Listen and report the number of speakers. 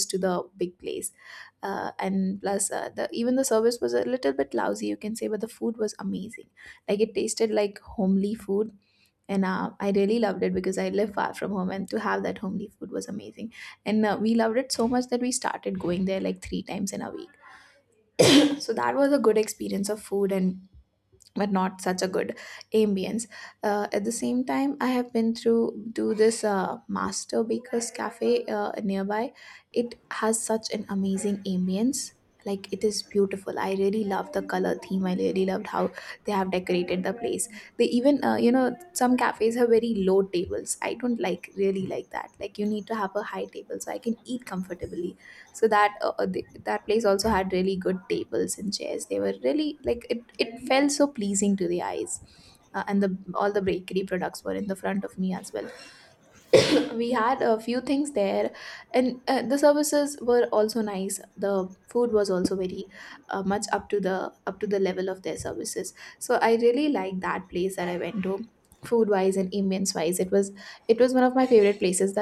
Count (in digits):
1